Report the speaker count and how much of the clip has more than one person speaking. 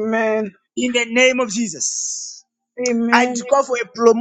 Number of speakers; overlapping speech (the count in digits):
2, about 7%